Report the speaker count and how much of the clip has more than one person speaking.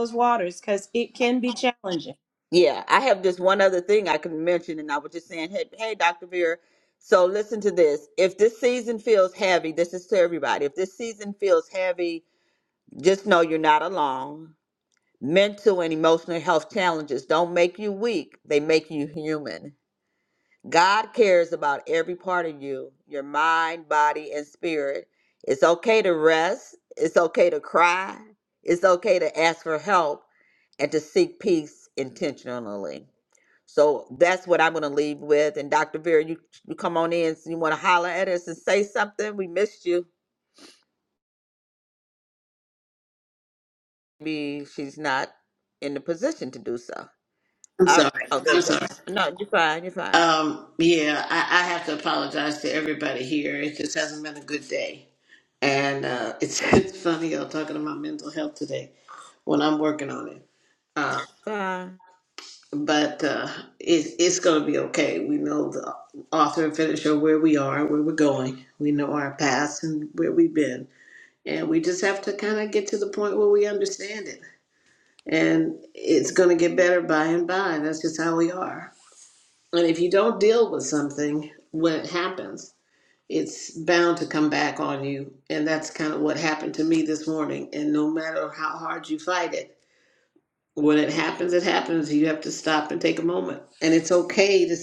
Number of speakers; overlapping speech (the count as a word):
three, about 1%